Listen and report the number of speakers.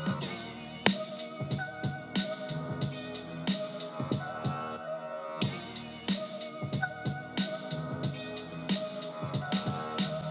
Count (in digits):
0